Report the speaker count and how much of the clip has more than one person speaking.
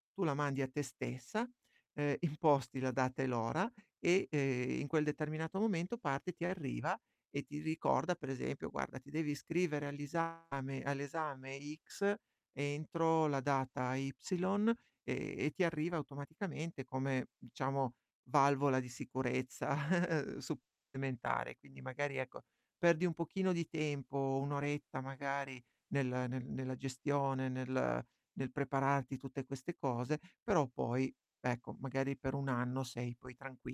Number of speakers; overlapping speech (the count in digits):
1, no overlap